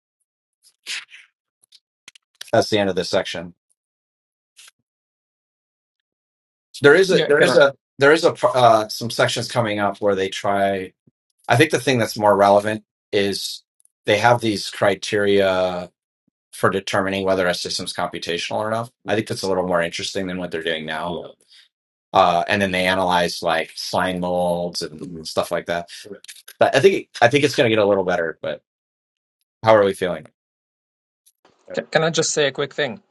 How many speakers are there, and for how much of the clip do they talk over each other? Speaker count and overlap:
two, about 1%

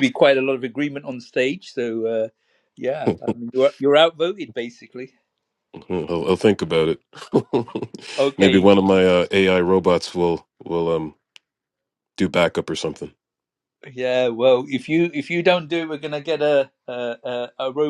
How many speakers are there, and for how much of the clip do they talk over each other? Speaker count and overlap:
two, about 1%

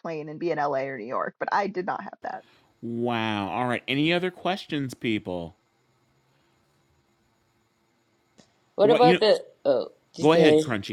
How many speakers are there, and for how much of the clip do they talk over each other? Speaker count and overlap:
three, about 8%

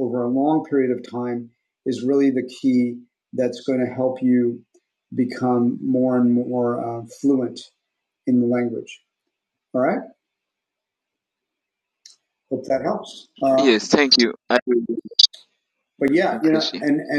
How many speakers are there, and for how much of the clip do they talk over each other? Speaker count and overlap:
two, about 4%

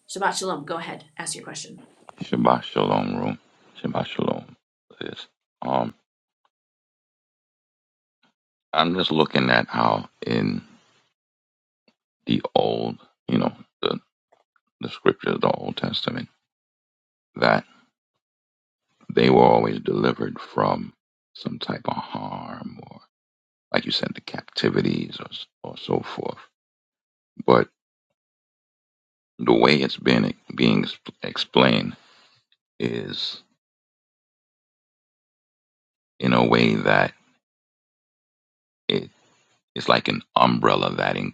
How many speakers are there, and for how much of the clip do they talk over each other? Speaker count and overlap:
two, no overlap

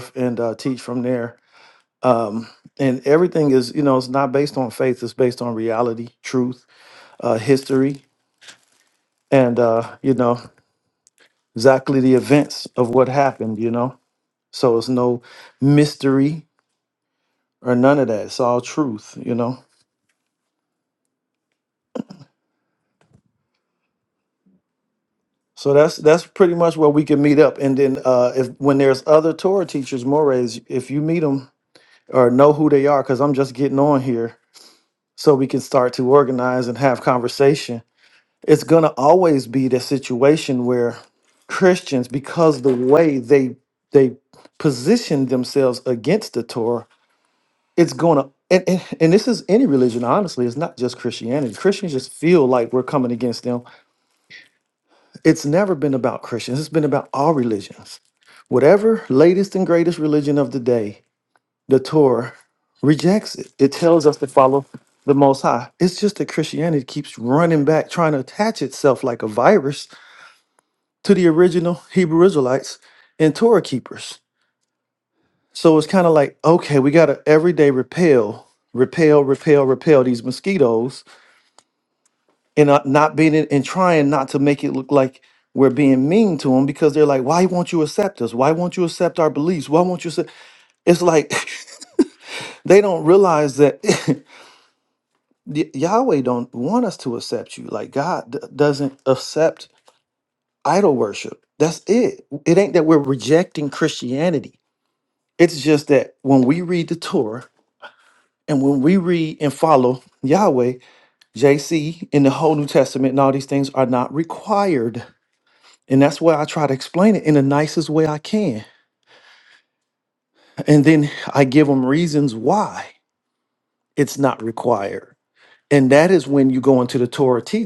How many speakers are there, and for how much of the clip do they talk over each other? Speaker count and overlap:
one, no overlap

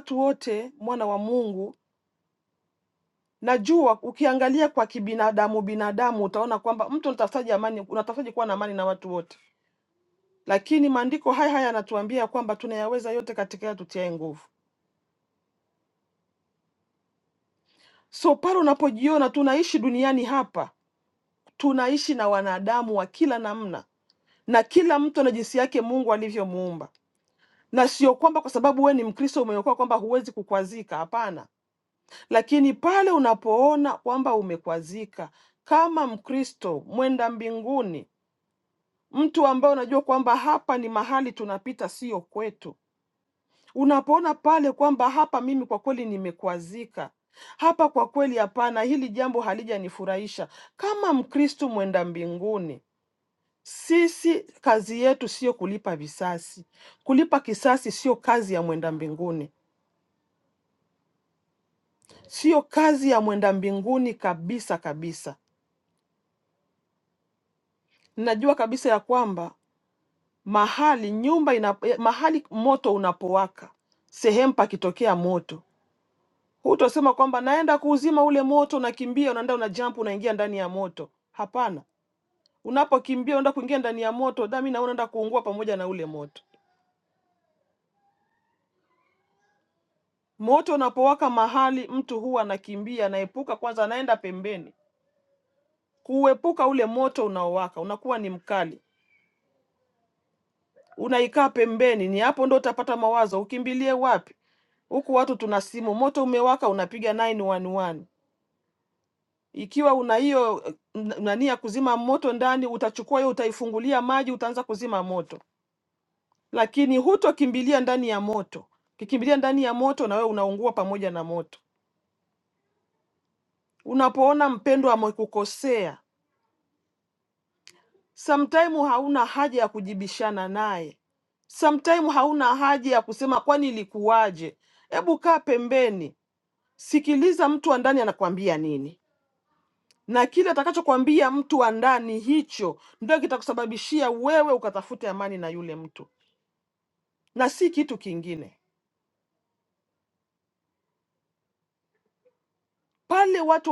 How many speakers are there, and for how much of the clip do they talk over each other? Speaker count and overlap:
one, no overlap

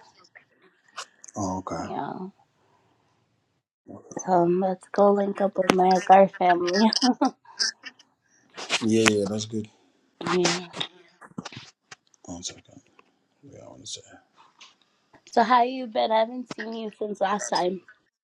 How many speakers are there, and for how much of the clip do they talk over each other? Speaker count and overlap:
two, about 1%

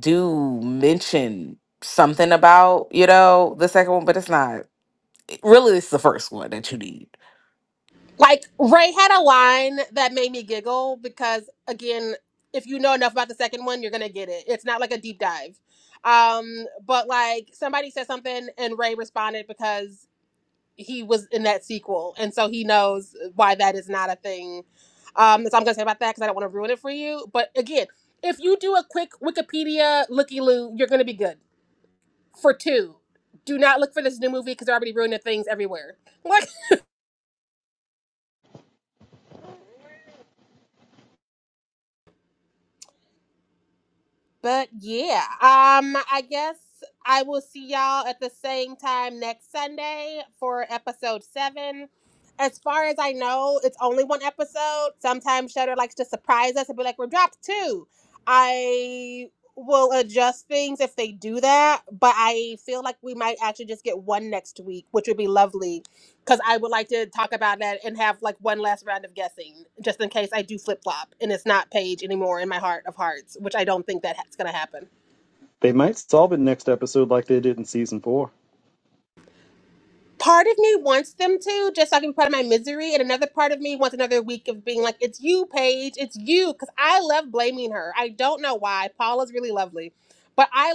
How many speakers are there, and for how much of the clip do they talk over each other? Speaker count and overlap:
three, no overlap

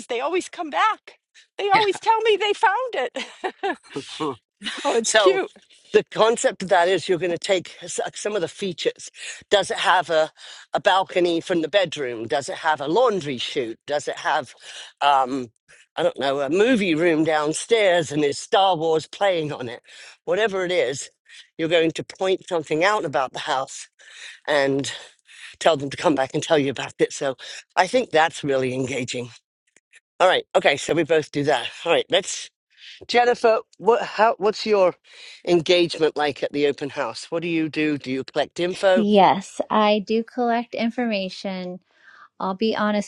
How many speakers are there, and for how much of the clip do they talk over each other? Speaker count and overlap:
three, about 1%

